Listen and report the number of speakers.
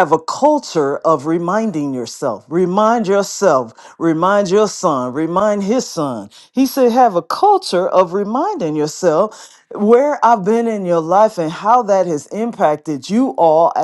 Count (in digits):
1